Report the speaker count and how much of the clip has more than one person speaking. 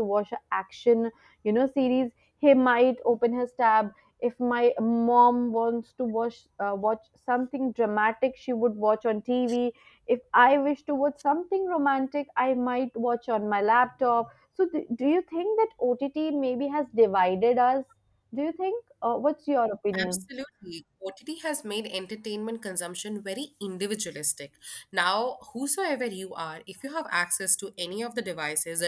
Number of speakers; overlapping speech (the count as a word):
two, about 1%